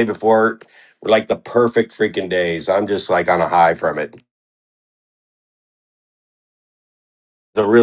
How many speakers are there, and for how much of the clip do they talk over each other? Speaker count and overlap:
one, no overlap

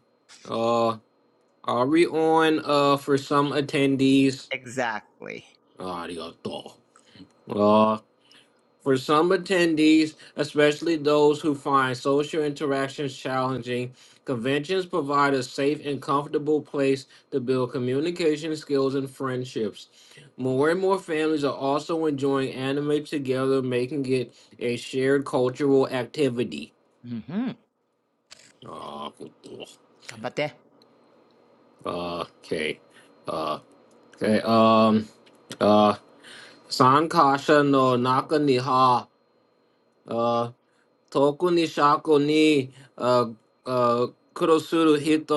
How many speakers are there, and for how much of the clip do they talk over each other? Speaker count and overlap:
two, no overlap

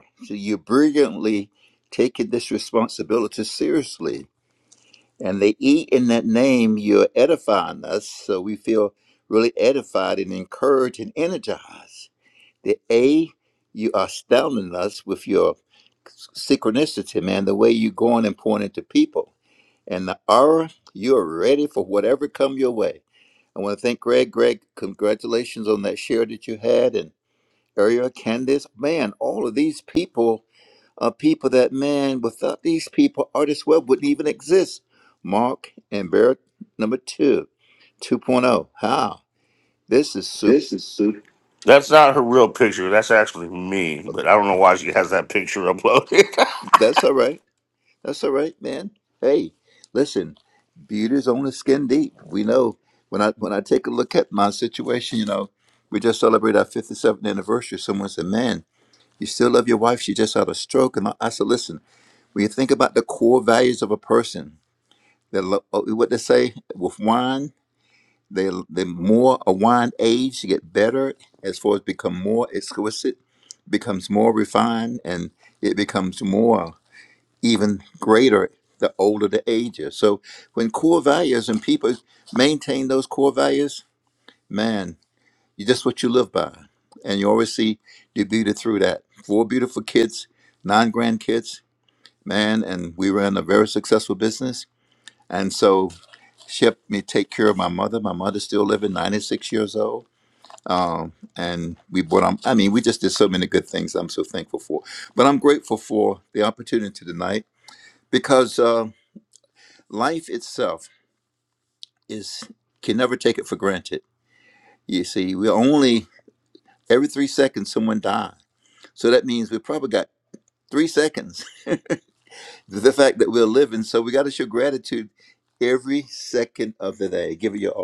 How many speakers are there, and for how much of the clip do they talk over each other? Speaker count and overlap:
two, no overlap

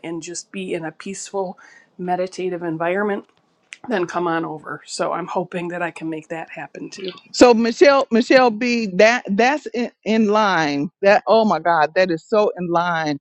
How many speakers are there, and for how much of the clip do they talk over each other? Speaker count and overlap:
two, no overlap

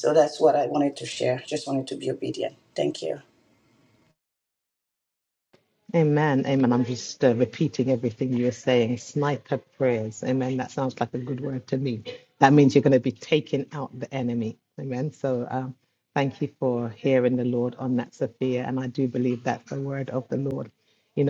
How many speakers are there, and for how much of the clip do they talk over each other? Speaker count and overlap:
two, no overlap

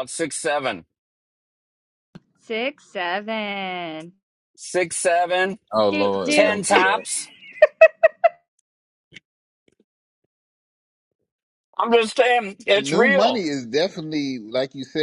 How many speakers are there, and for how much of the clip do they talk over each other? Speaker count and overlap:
three, about 12%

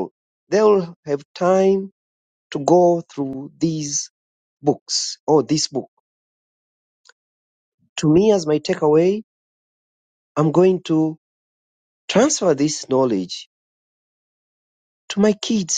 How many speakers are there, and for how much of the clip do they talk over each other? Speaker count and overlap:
one, no overlap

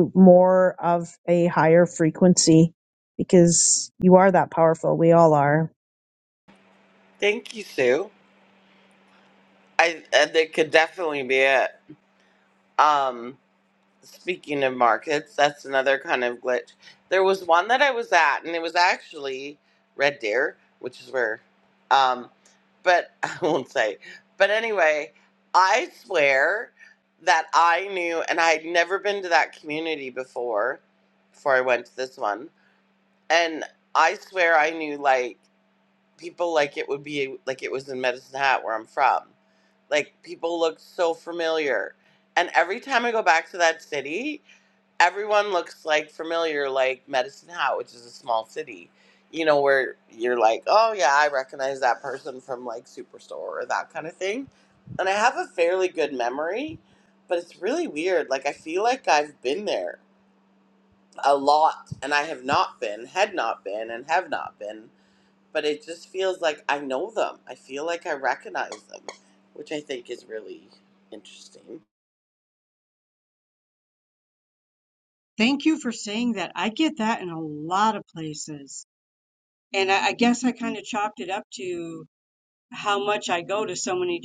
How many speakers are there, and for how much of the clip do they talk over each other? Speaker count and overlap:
three, no overlap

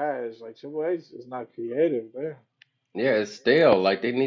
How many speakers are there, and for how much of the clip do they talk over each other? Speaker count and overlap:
two, no overlap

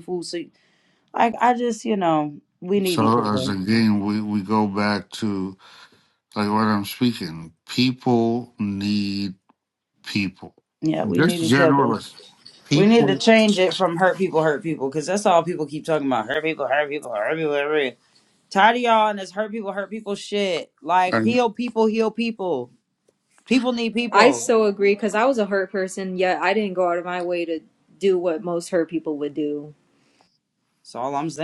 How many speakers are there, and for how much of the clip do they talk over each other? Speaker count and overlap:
three, about 9%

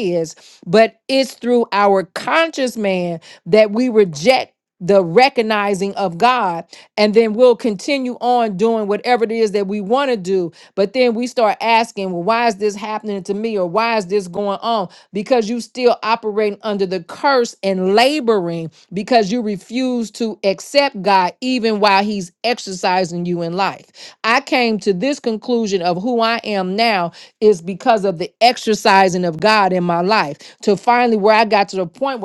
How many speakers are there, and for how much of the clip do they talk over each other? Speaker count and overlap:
one, no overlap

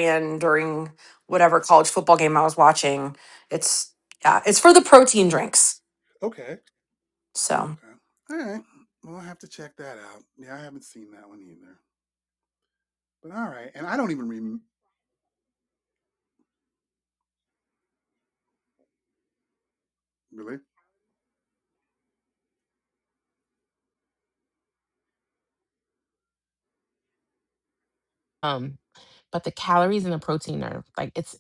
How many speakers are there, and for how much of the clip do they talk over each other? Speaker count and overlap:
three, no overlap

